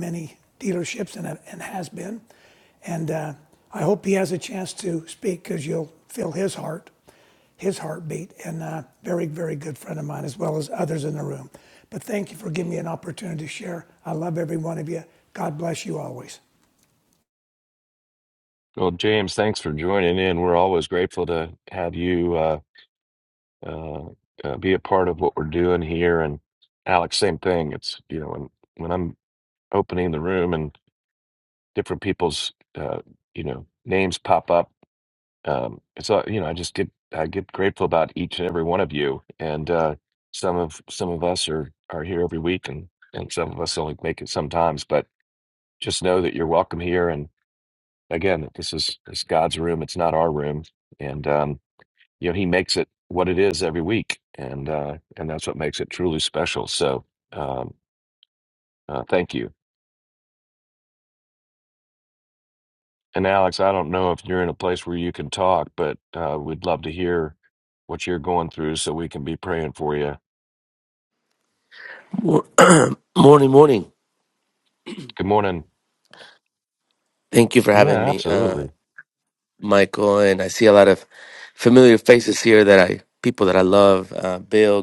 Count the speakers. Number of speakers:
3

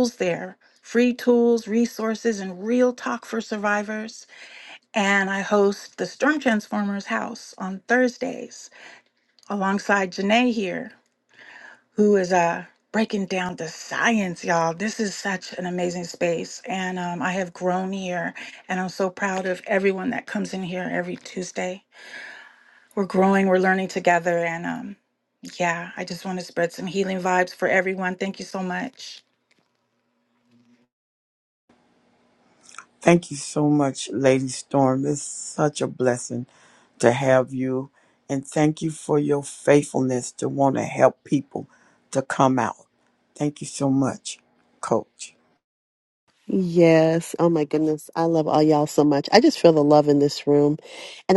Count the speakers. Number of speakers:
3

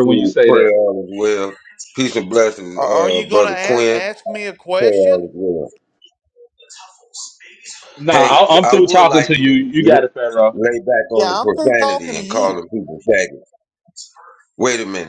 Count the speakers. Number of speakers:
3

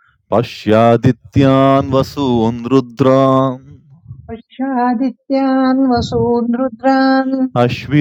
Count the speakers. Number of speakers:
2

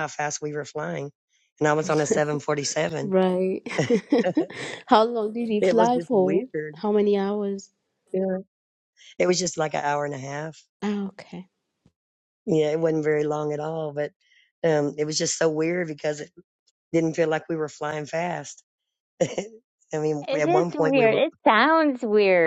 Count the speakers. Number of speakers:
3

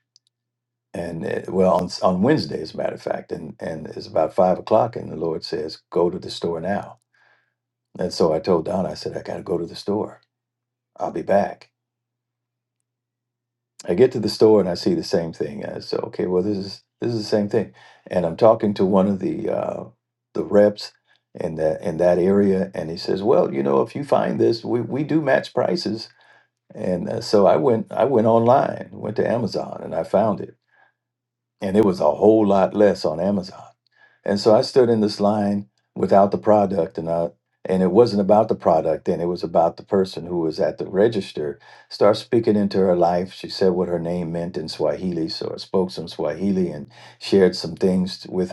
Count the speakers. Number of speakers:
1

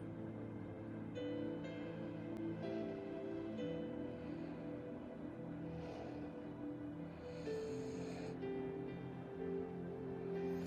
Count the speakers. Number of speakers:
0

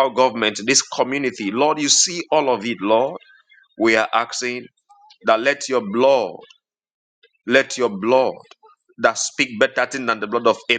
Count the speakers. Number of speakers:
1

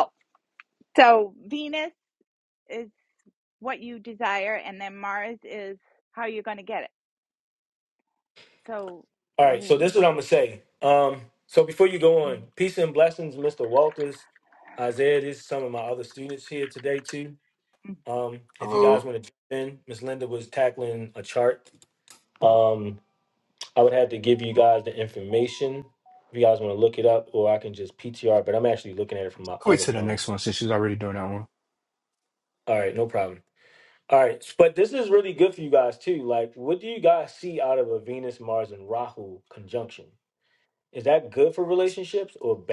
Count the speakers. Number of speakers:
3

